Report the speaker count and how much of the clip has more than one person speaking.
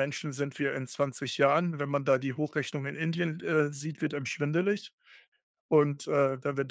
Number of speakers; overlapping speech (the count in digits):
1, no overlap